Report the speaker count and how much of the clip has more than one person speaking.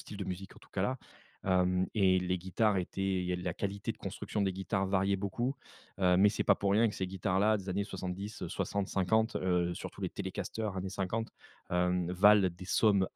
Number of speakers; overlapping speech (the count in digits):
1, no overlap